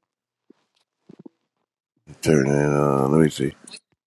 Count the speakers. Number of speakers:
1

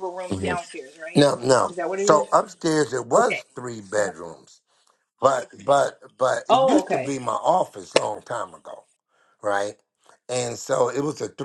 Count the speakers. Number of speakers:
2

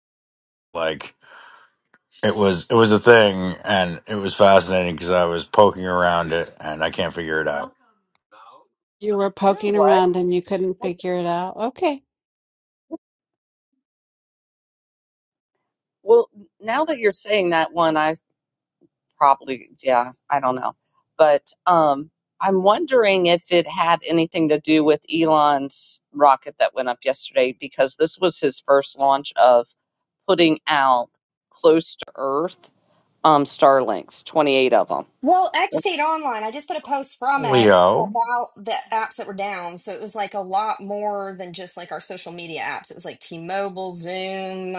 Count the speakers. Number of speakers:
4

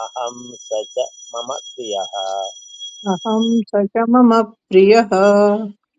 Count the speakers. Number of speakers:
2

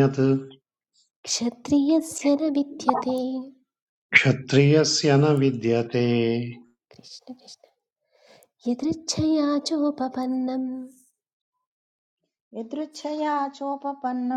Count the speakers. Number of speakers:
3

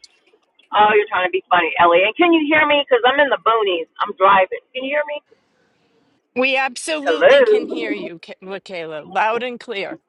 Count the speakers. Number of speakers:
2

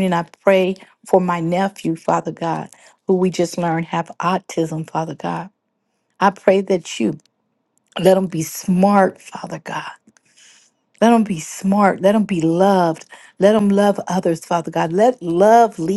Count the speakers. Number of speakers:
1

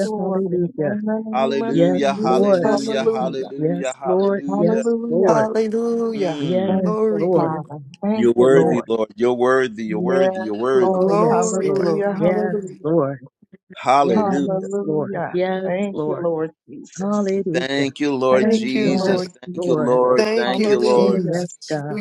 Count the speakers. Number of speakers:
4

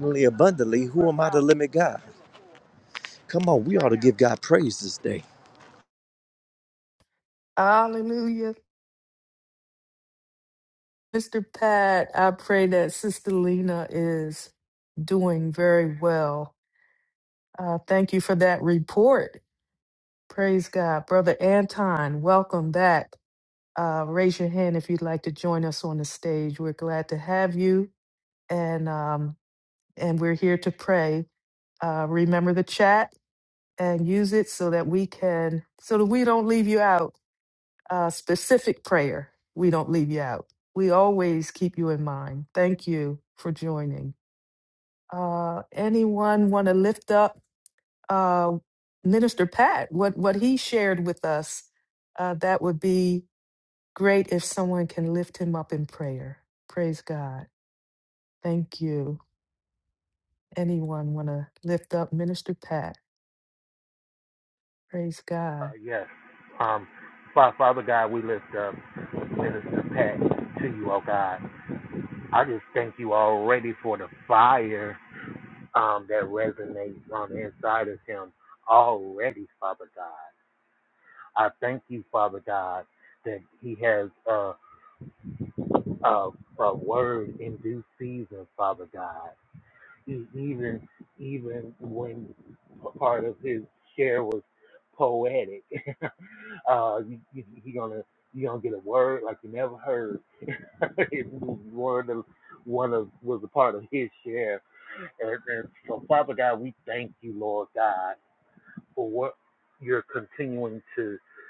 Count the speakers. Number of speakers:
3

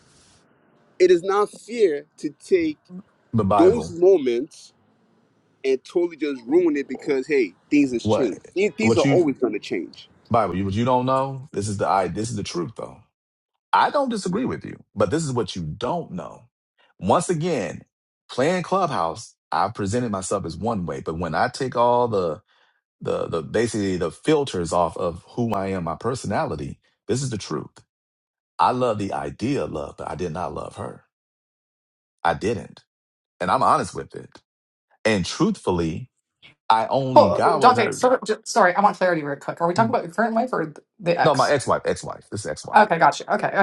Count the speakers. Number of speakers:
3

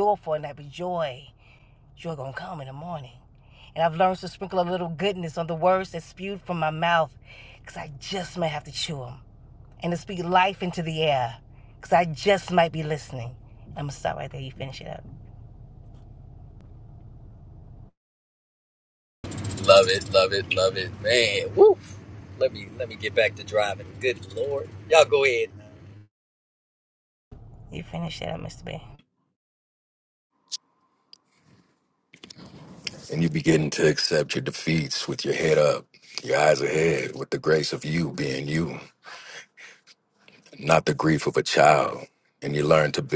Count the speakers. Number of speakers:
3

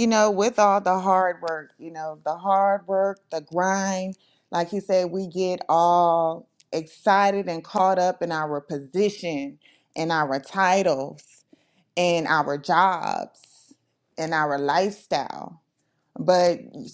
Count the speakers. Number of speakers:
1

